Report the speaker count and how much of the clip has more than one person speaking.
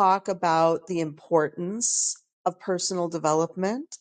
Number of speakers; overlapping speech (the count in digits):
1, no overlap